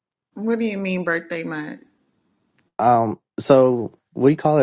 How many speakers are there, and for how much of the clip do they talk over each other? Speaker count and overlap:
2, no overlap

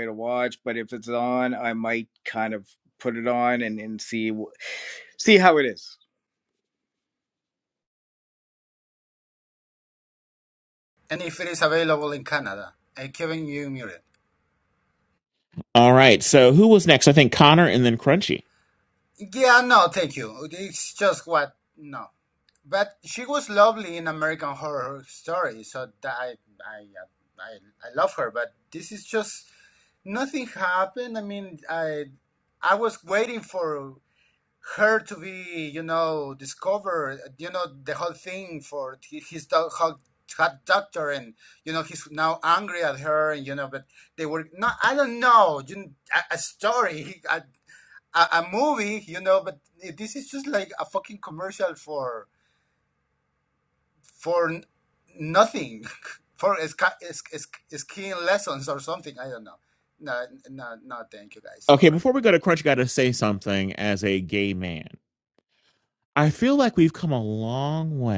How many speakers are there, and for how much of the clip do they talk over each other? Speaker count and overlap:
3, under 1%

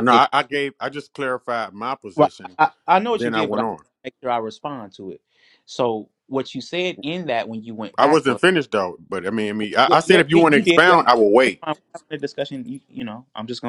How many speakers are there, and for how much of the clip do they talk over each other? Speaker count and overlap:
2, about 19%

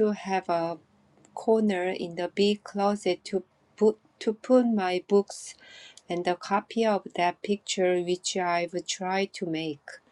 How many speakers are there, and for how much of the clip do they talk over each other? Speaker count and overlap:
1, no overlap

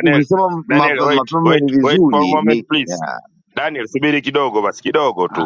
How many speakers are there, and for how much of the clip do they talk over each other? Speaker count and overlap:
2, about 48%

